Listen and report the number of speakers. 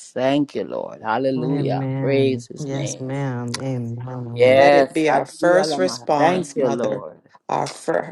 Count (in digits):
3